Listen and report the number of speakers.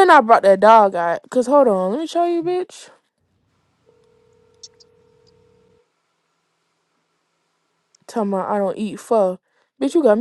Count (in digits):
1